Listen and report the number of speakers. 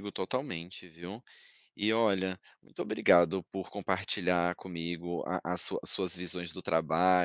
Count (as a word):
one